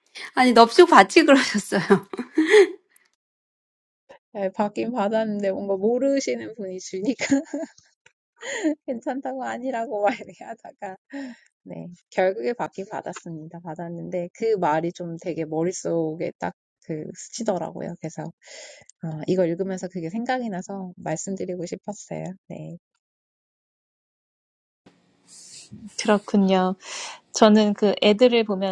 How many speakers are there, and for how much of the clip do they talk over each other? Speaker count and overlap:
3, no overlap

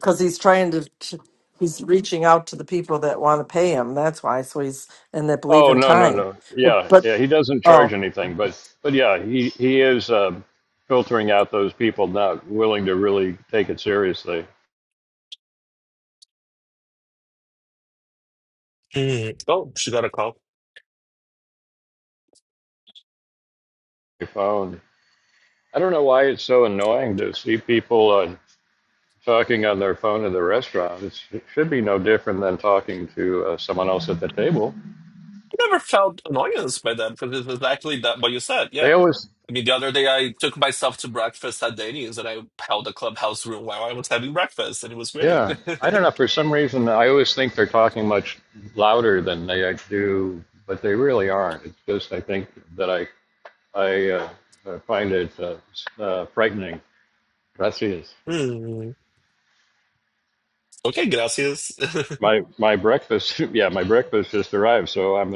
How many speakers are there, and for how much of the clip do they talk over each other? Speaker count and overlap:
3, about 3%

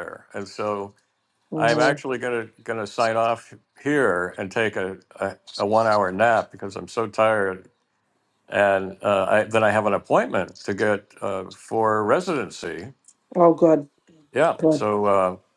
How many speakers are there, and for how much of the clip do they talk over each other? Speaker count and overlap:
2, about 4%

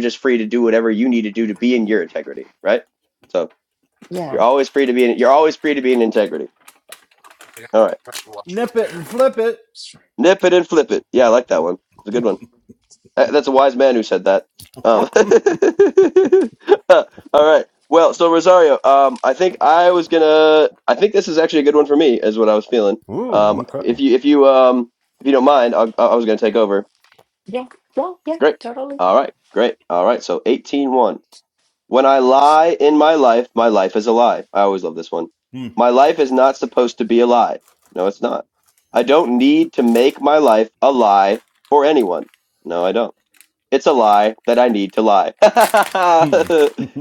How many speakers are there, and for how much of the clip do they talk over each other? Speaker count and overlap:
3, about 2%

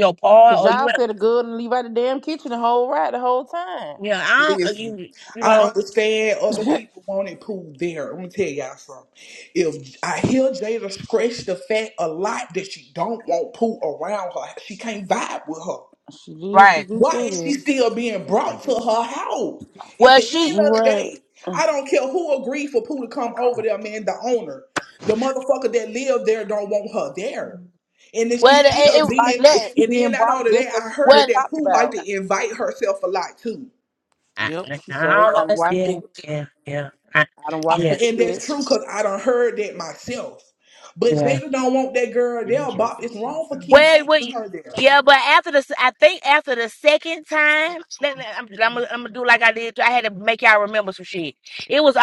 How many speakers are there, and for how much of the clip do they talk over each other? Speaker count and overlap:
3, about 18%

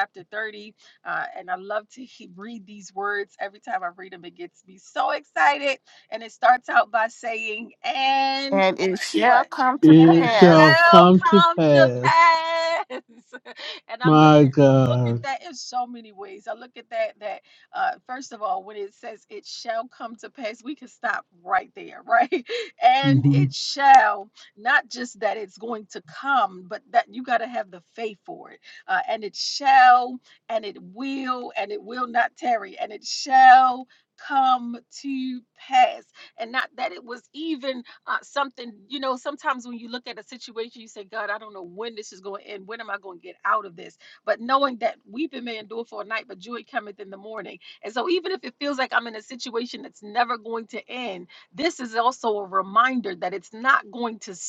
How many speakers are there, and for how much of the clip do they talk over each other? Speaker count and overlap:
3, about 7%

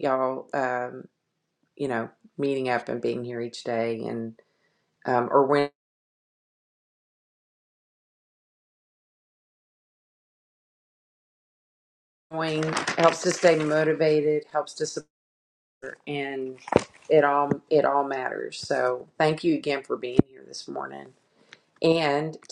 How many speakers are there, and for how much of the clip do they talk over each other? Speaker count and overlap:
1, no overlap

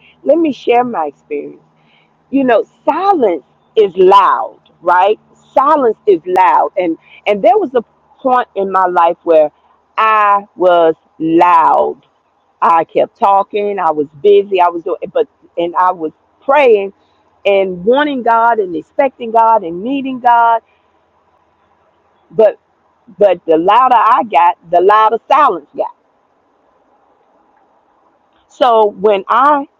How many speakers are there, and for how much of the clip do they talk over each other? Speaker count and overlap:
1, no overlap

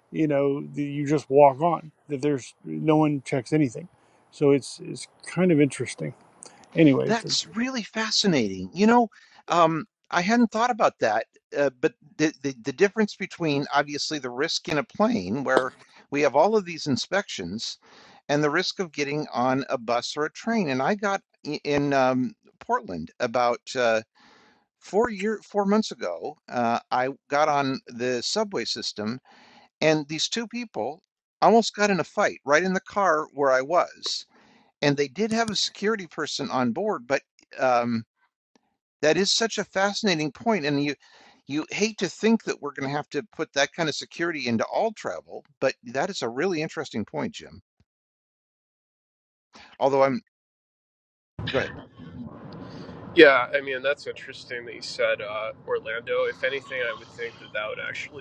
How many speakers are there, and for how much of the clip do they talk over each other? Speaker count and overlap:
3, under 1%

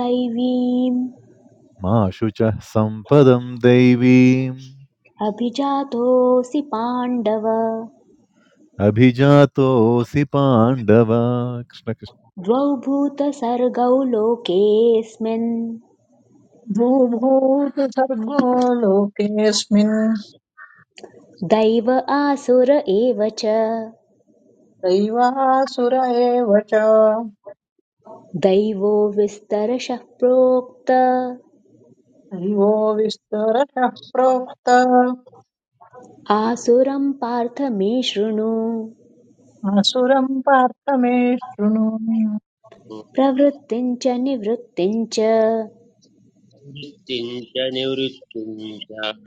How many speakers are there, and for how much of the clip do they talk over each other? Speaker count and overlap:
4, no overlap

